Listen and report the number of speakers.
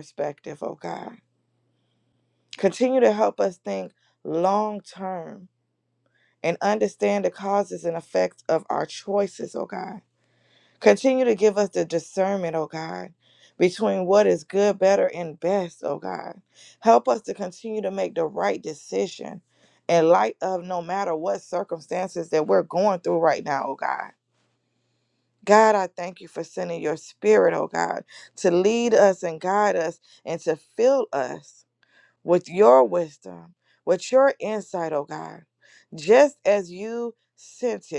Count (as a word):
one